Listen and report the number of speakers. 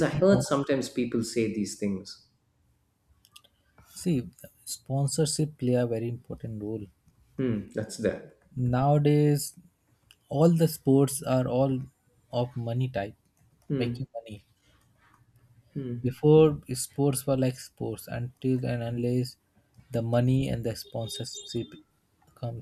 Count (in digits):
2